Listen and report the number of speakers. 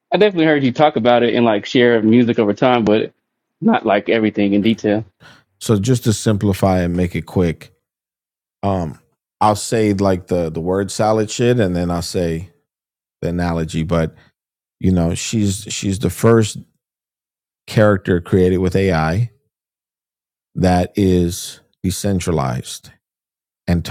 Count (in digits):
2